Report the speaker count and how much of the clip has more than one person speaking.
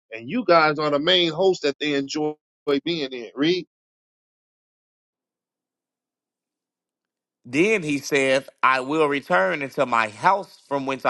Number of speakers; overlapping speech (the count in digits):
2, no overlap